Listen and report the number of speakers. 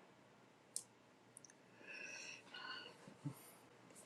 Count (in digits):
0